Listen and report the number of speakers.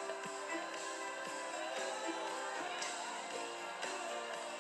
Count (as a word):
zero